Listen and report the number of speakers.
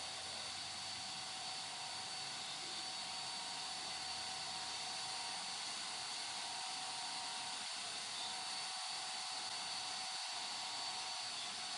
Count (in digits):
0